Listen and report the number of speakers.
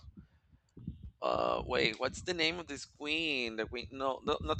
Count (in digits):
1